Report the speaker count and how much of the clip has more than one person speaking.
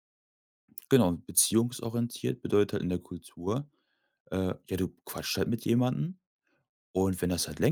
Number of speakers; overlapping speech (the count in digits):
1, no overlap